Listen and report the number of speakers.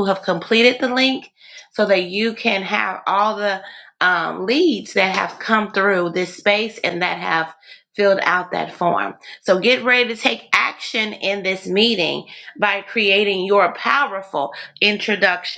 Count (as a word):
one